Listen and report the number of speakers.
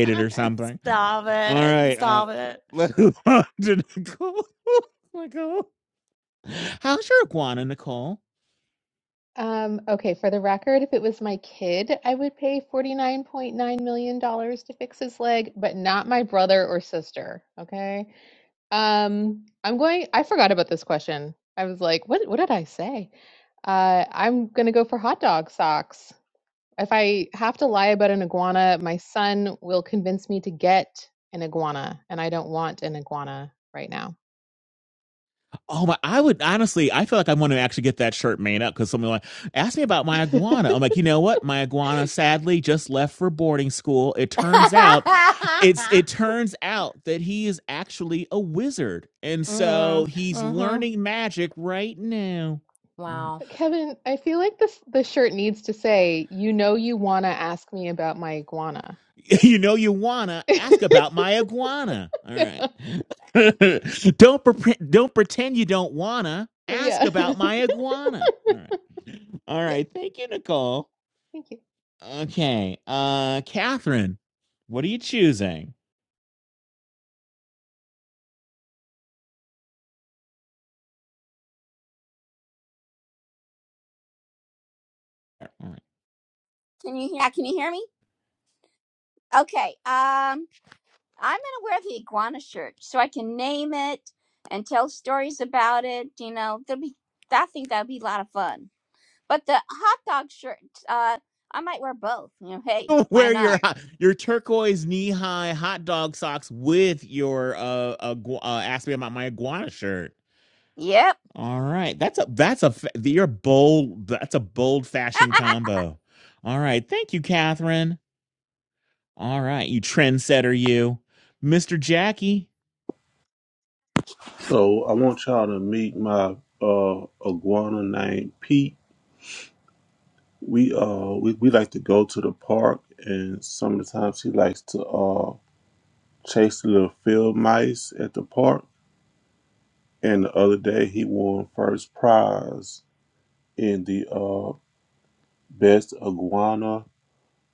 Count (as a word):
five